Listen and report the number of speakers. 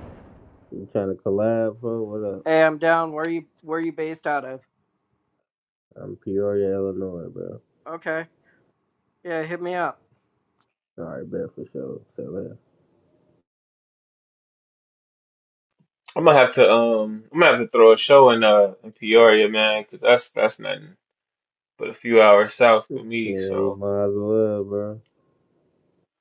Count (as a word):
three